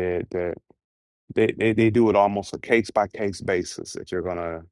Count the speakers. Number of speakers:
1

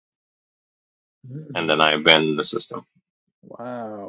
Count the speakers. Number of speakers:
2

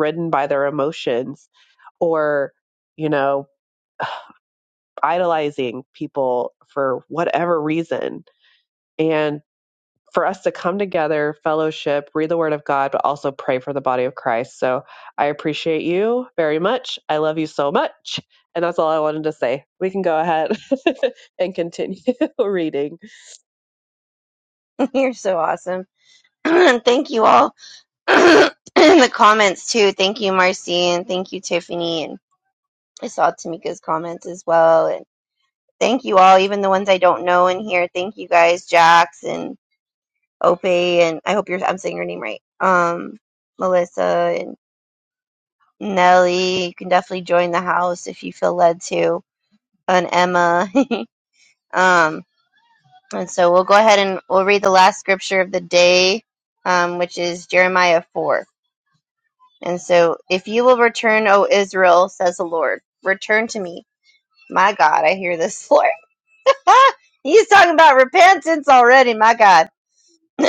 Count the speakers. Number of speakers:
2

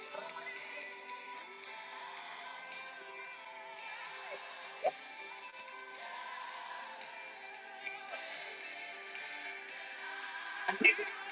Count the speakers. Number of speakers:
0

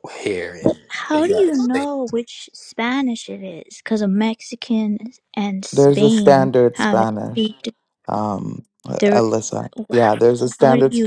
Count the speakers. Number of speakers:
3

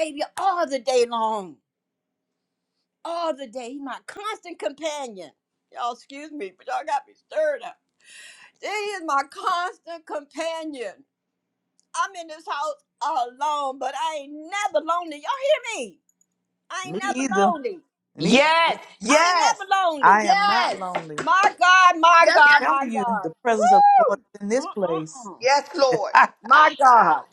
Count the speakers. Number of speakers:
3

